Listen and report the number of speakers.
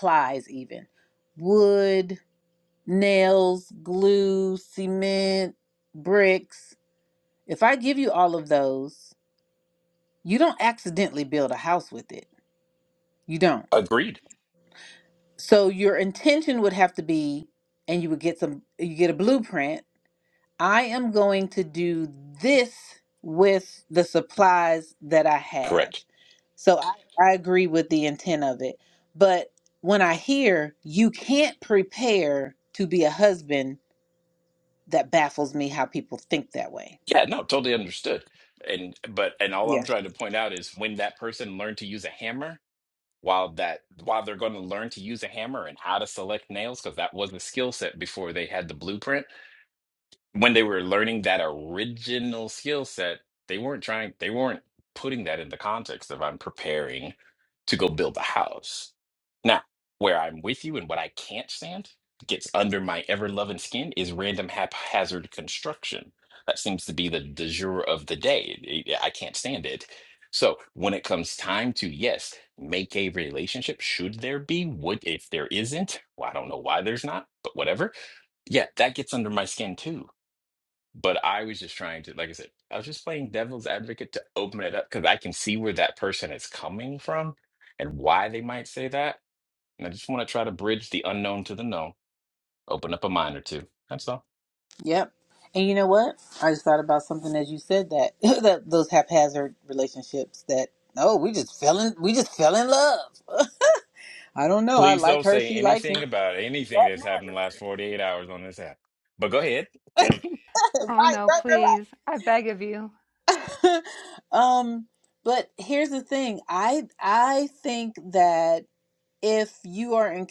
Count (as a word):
three